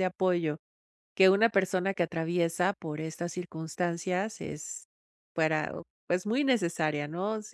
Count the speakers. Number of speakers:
one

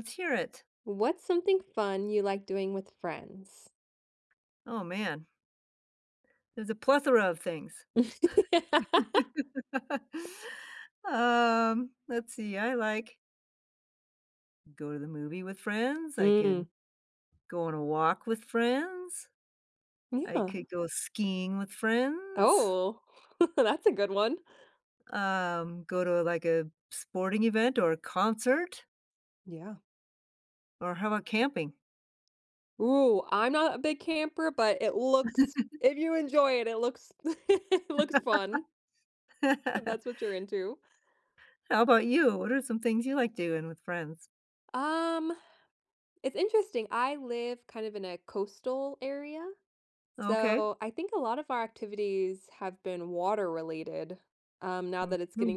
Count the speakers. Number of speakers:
two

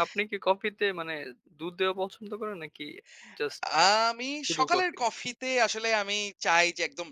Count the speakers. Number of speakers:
two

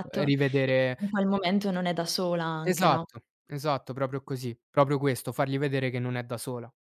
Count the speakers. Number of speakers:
two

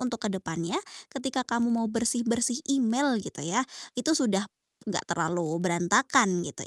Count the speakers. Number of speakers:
one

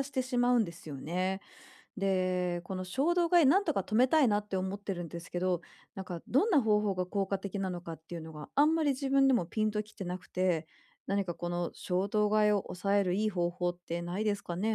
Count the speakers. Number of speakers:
one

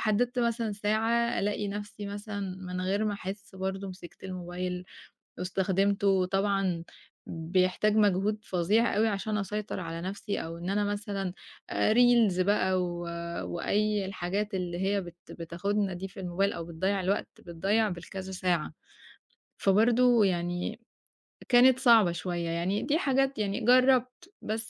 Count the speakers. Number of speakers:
one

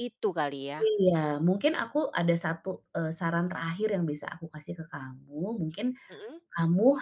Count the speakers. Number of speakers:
two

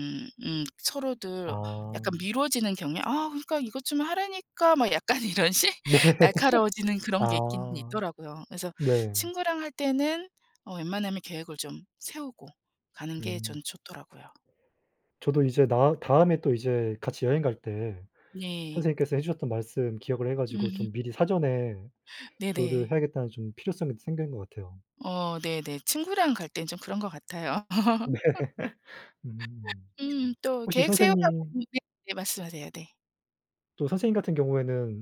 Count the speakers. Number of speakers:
two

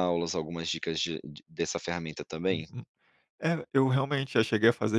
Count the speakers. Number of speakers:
two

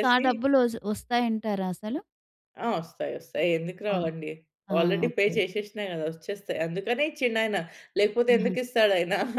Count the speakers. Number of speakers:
two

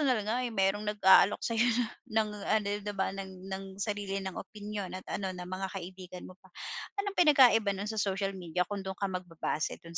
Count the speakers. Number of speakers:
one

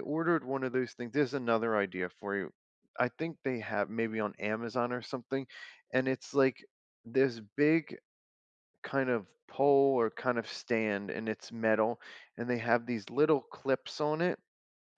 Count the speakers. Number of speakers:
one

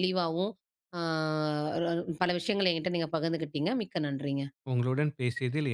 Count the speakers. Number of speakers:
two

